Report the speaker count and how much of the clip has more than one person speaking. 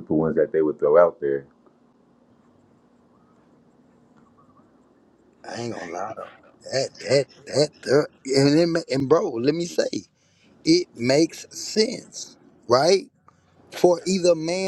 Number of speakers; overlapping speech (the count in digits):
2, no overlap